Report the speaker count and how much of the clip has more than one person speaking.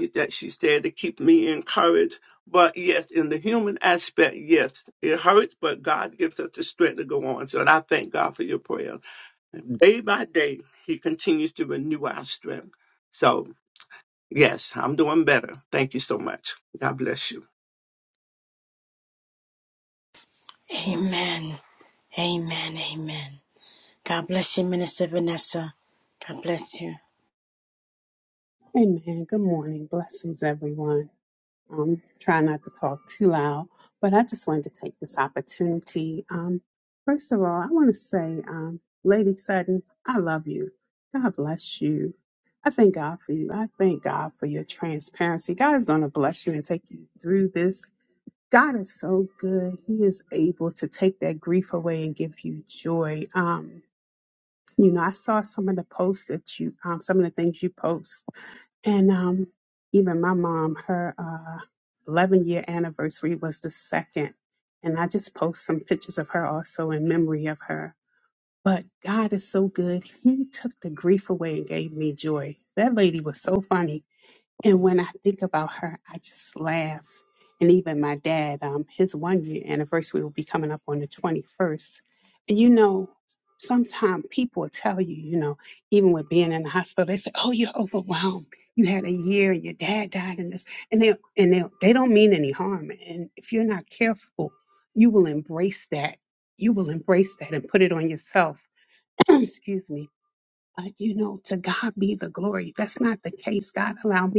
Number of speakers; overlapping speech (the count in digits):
3, no overlap